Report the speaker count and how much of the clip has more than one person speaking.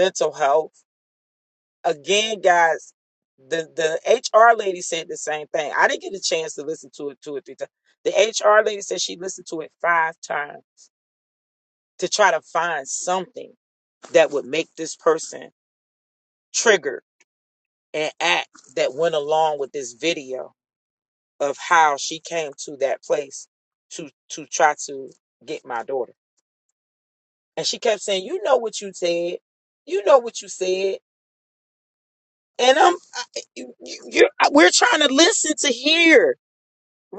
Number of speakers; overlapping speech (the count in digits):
1, no overlap